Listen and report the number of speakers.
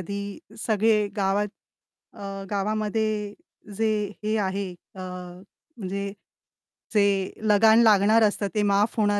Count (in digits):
1